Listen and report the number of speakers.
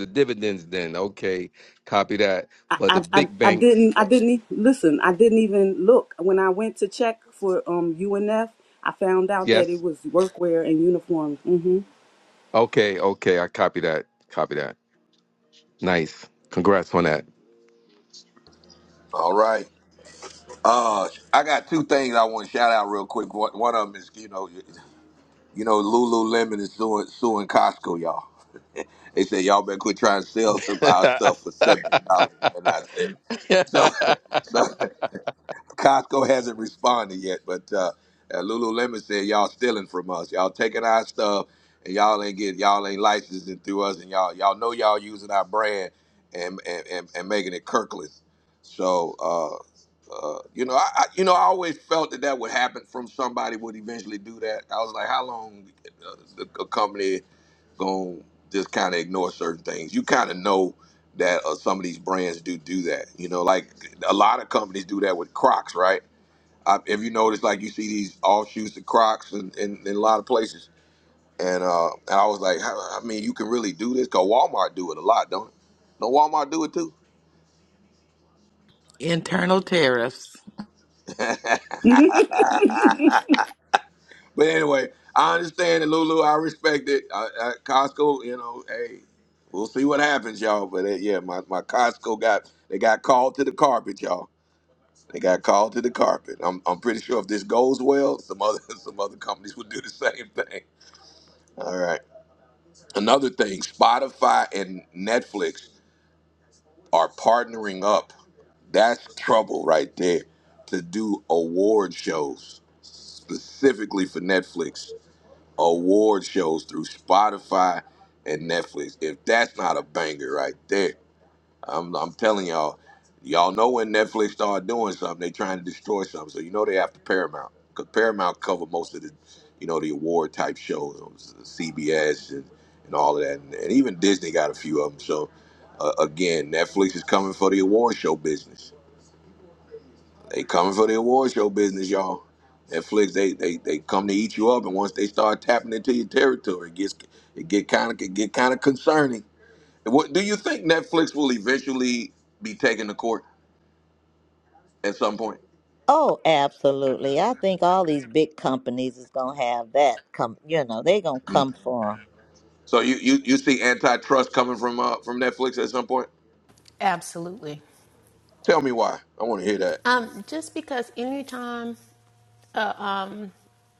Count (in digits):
6